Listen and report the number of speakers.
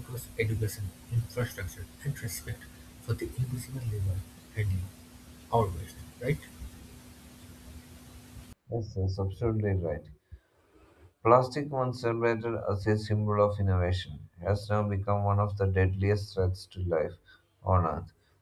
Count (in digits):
2